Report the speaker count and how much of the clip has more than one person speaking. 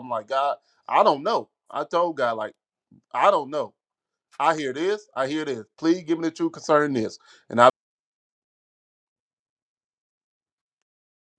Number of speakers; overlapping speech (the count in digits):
1, no overlap